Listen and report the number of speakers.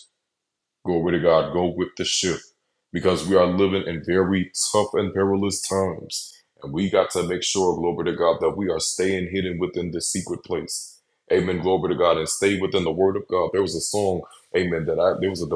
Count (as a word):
one